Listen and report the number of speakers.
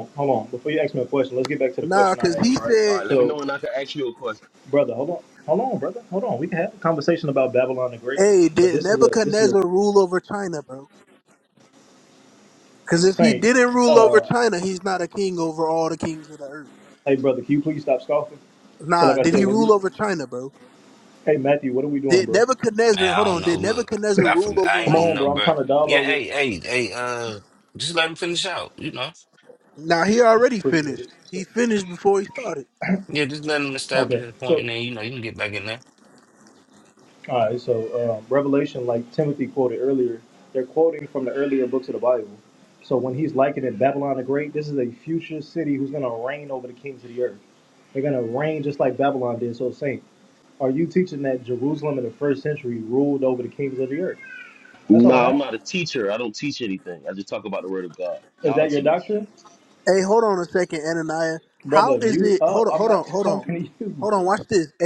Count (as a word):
four